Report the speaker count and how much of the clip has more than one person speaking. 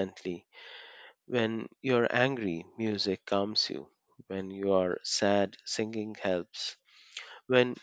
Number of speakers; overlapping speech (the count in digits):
1, no overlap